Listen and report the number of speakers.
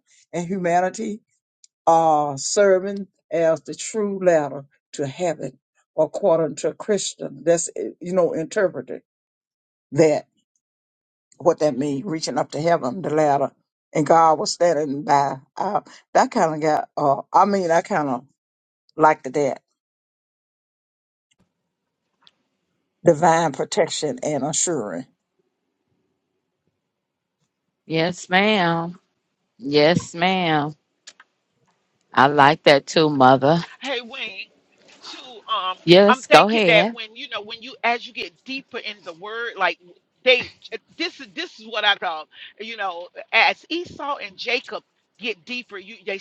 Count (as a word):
three